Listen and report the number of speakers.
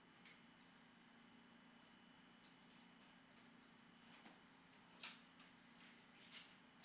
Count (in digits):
0